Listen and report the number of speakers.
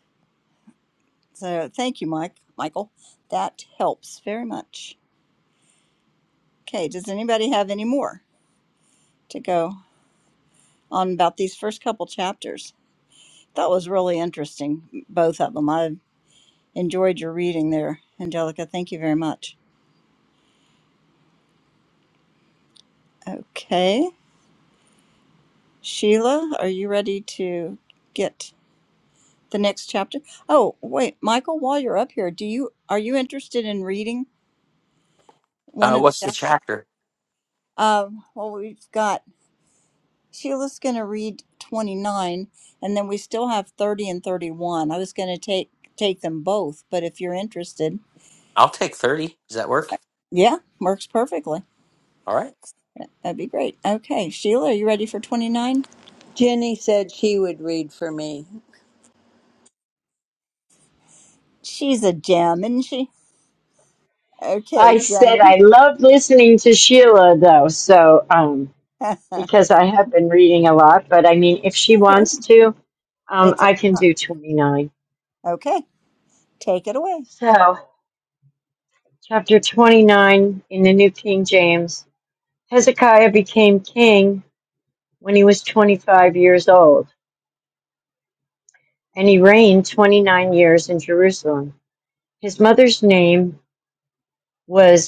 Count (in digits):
4